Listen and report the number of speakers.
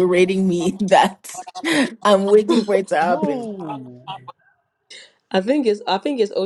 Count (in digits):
3